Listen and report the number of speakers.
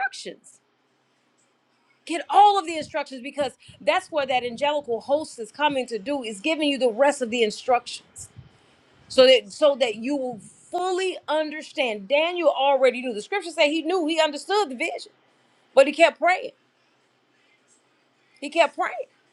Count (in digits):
1